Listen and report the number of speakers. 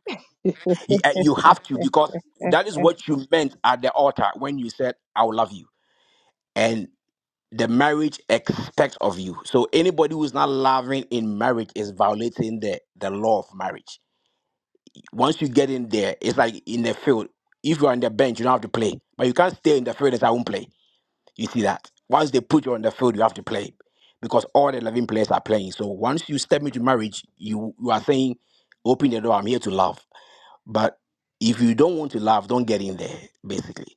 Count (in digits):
1